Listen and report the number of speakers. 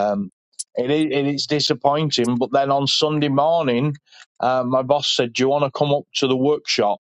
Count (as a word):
one